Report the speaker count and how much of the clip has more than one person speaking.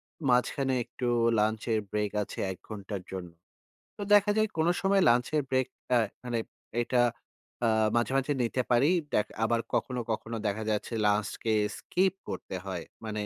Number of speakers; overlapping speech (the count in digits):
1, no overlap